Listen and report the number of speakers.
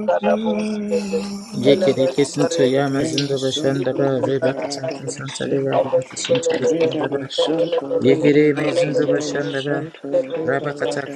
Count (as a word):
three